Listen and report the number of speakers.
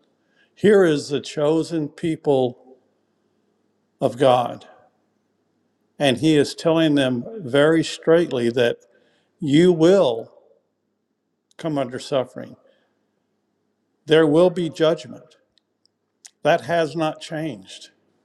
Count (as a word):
one